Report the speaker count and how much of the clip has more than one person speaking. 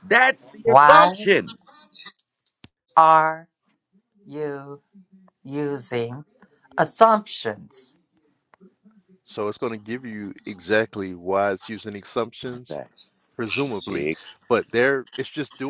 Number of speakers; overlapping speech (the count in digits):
3, about 5%